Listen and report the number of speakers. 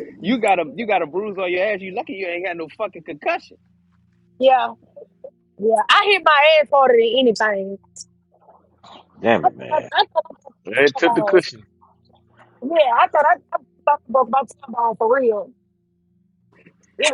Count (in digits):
3